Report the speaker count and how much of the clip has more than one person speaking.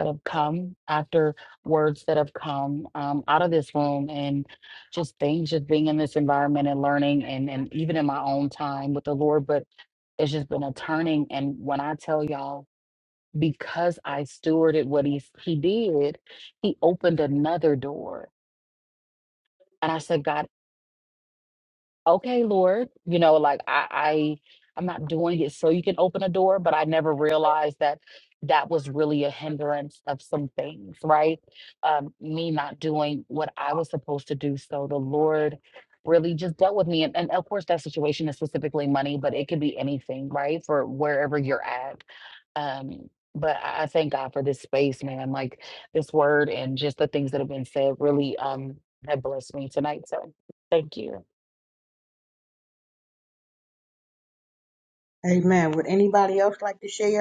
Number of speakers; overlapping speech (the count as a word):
two, no overlap